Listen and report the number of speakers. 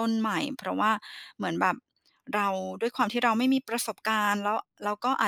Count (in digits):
1